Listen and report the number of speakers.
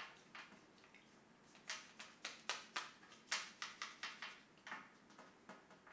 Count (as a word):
zero